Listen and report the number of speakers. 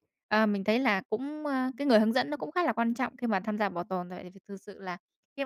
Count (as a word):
one